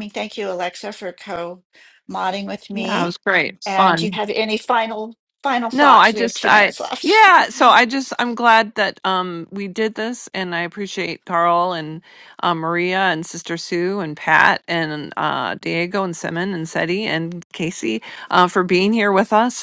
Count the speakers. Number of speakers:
2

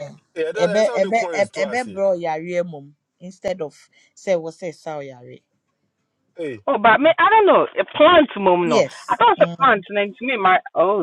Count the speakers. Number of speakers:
3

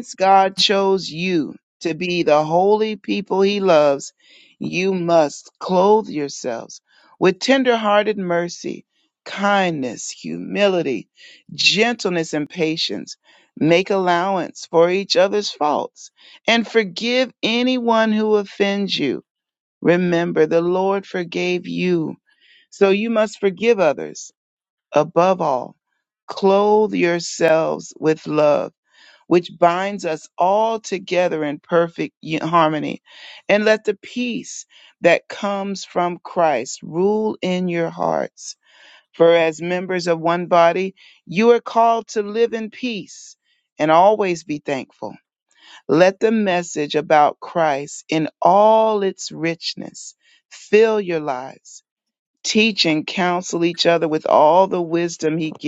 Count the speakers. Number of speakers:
1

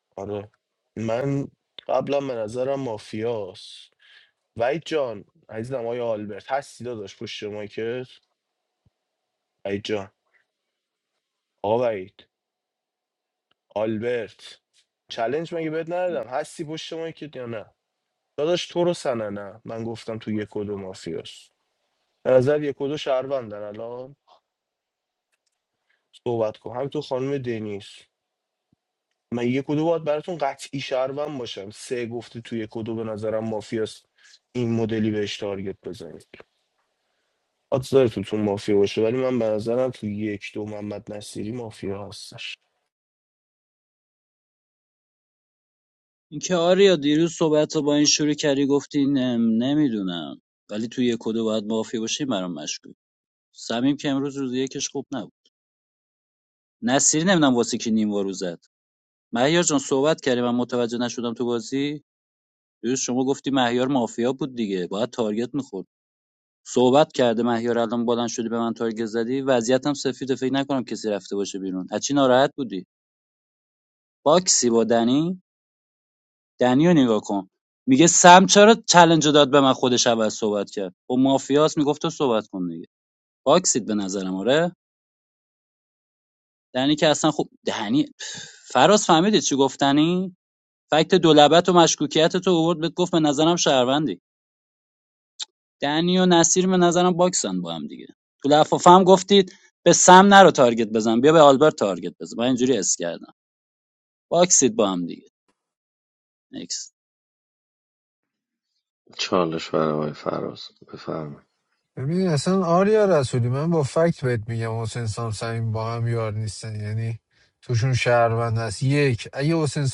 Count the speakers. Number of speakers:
4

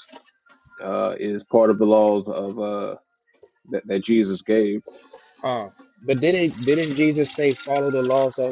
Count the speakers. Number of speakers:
2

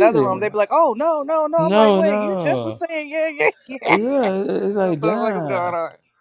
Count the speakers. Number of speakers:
2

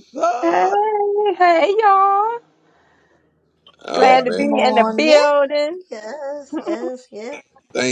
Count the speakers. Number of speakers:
3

